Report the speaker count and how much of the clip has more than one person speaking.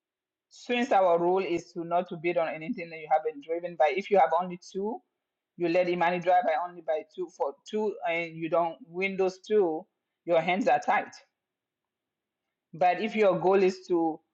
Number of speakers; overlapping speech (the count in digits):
1, no overlap